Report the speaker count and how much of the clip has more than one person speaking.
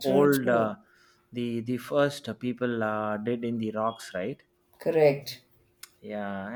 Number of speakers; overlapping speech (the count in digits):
2, about 11%